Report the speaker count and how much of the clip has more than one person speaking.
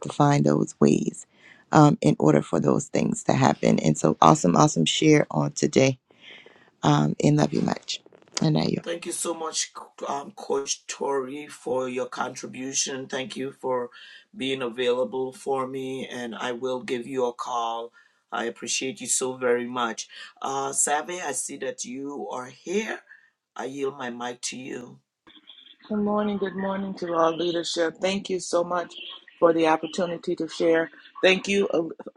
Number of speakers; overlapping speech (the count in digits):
3, no overlap